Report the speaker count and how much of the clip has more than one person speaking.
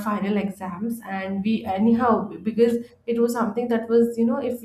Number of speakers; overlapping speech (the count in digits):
1, no overlap